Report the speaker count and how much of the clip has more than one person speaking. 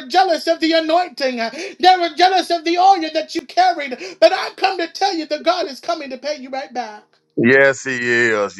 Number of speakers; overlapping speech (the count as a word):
two, no overlap